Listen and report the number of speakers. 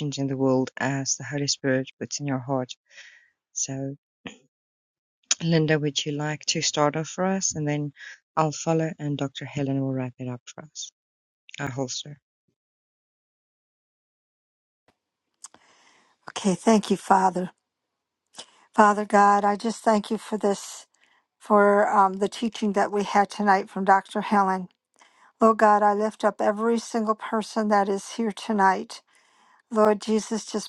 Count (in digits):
2